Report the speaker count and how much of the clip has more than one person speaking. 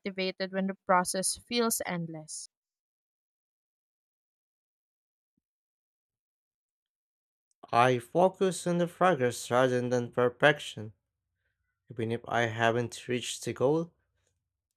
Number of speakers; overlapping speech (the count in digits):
2, no overlap